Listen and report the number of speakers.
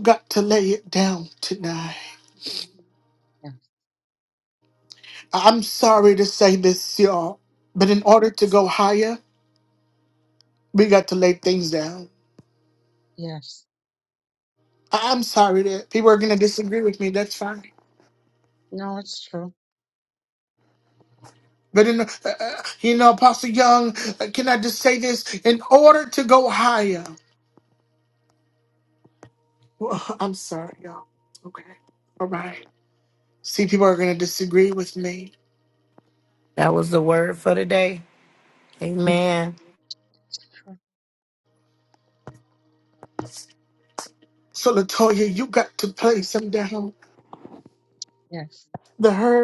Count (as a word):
three